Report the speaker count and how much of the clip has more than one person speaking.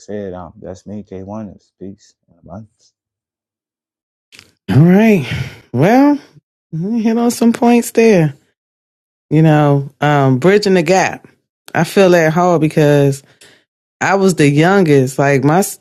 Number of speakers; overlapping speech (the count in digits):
2, no overlap